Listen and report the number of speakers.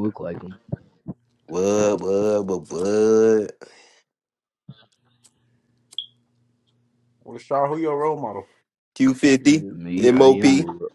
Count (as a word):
three